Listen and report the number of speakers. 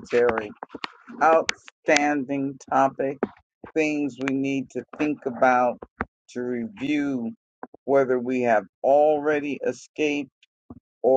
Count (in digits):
1